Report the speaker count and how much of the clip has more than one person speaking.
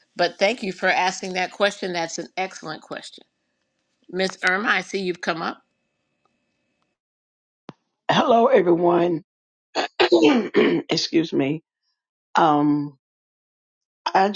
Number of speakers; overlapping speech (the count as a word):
two, no overlap